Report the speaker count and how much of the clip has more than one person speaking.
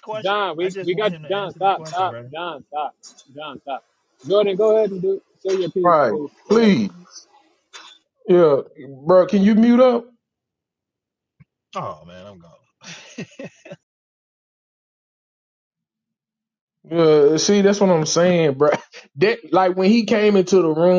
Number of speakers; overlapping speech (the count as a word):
three, about 12%